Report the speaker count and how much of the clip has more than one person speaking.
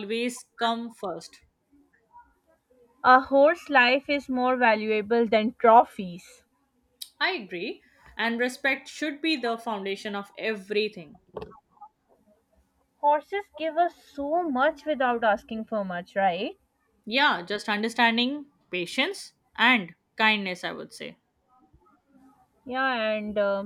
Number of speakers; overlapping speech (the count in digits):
2, no overlap